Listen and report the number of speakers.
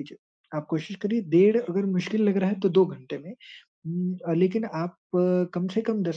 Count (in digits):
1